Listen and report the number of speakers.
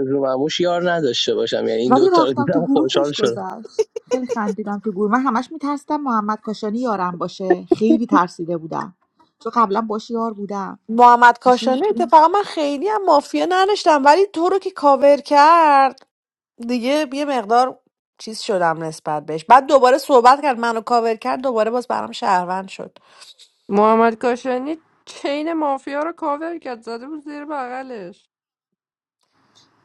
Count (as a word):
four